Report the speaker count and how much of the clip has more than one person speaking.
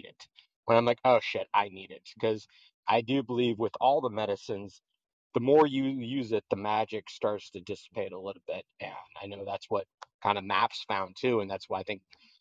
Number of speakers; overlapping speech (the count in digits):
1, no overlap